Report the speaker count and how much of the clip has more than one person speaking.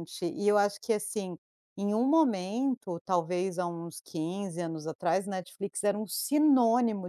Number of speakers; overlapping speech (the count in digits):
1, no overlap